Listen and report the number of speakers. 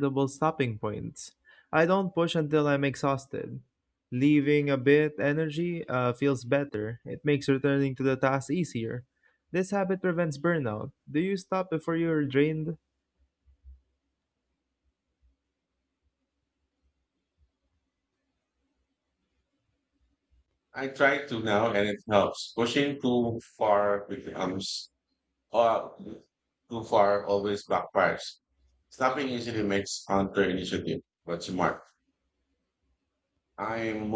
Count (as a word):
two